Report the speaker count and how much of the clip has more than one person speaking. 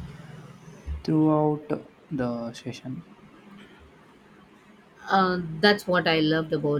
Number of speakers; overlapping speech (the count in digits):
2, no overlap